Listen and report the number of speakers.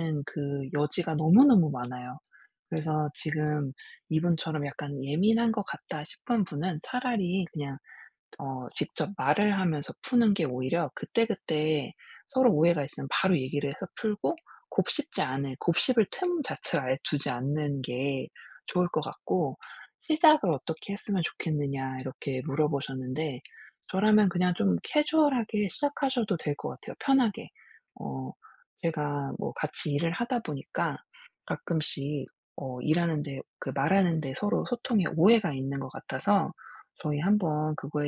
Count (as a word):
one